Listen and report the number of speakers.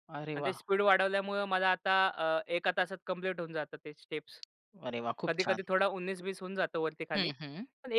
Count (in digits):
2